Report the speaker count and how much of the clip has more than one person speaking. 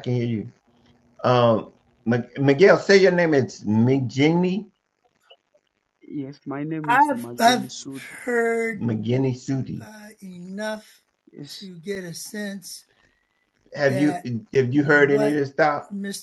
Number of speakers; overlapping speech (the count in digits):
3, about 9%